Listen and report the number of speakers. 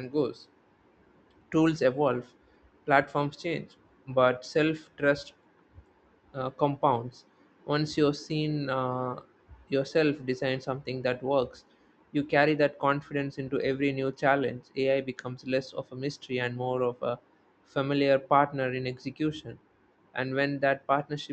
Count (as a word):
one